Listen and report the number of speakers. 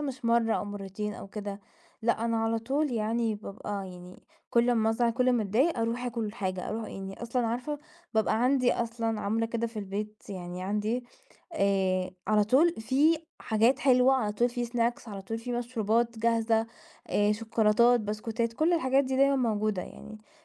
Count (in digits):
1